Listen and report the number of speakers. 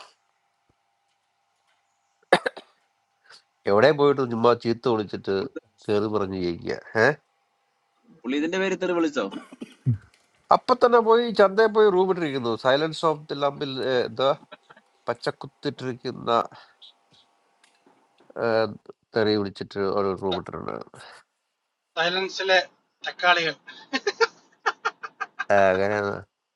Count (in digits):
3